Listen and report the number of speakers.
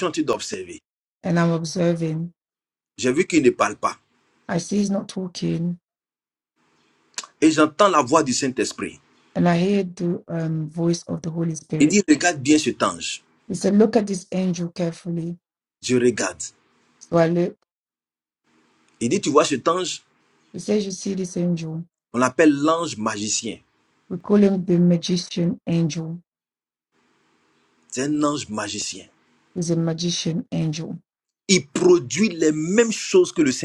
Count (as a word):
two